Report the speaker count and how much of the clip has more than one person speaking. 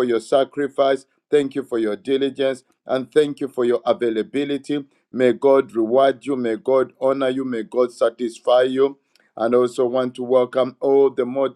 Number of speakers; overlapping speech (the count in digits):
1, no overlap